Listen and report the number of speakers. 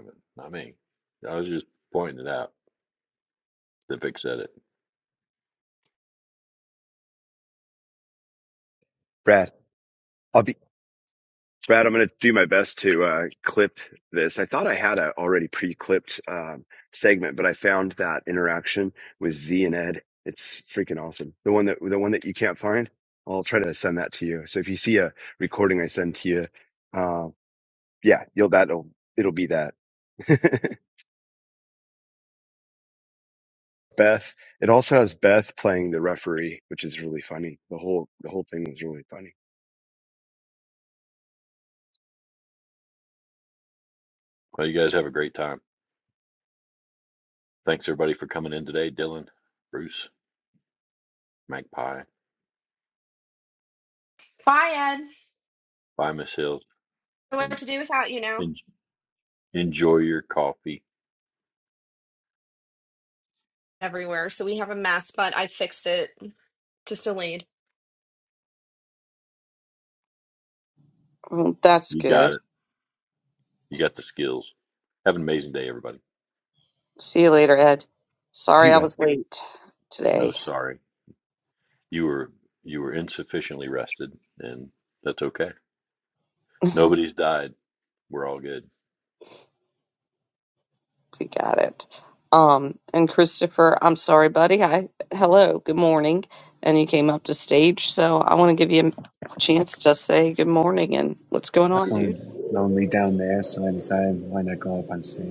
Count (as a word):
five